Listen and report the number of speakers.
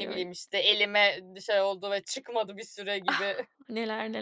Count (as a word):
two